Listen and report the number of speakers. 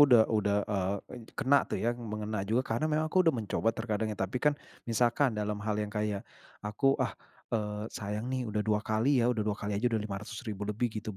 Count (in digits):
1